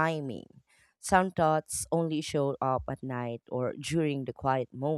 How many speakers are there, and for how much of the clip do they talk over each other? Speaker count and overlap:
1, no overlap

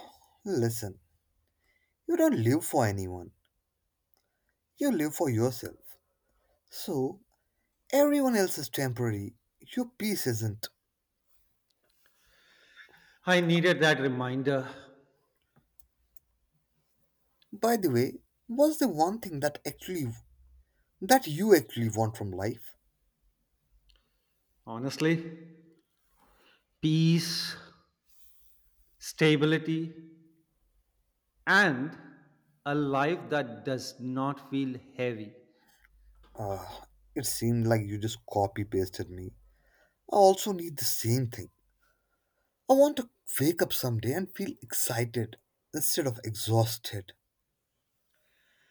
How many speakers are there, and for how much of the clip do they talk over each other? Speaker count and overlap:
2, no overlap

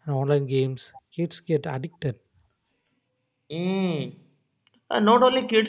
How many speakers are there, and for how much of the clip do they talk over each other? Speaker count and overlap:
2, no overlap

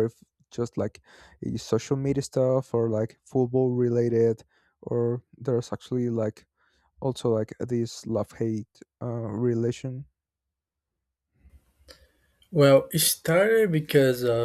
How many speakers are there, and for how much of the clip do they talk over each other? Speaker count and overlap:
2, no overlap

